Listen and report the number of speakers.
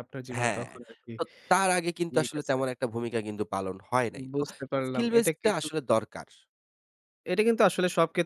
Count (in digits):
2